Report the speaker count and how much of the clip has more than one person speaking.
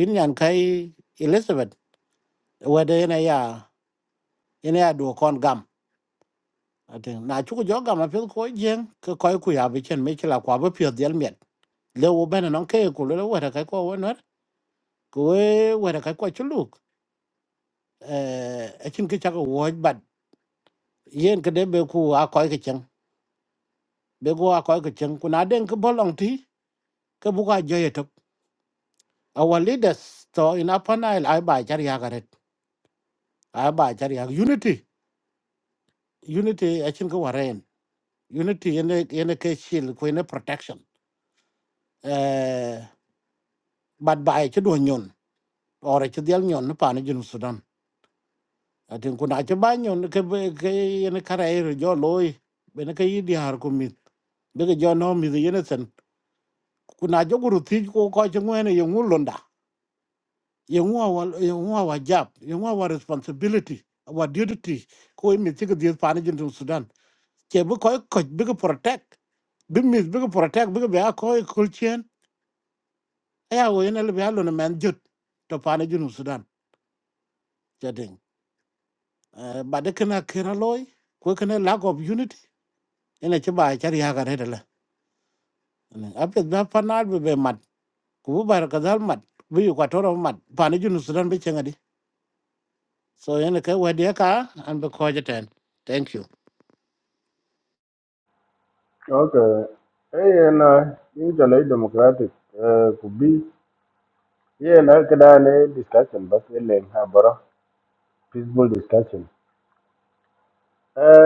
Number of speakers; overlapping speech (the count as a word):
two, no overlap